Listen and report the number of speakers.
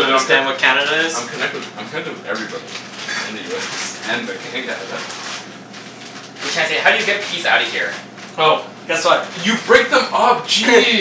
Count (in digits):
3